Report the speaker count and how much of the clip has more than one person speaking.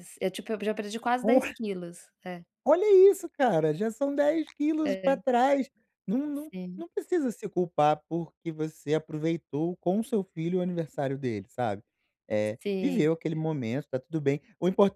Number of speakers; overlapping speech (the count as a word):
two, about 8%